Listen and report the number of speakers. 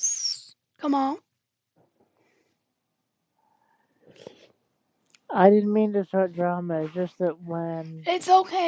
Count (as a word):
two